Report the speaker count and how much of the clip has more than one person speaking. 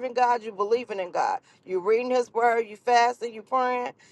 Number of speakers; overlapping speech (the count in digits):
1, no overlap